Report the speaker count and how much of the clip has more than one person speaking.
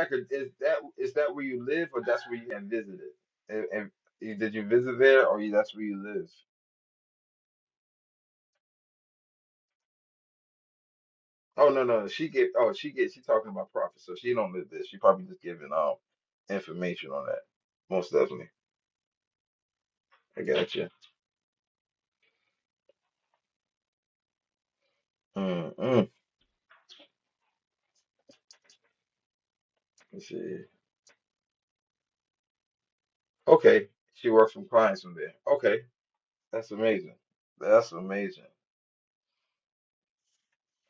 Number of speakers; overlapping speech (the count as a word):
one, no overlap